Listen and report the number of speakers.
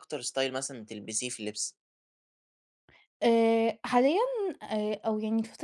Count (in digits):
2